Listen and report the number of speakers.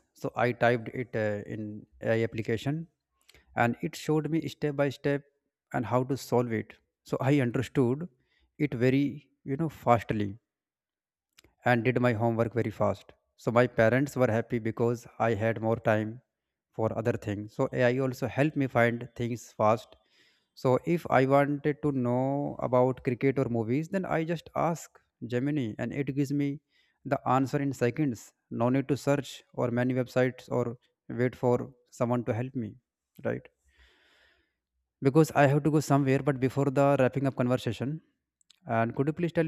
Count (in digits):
1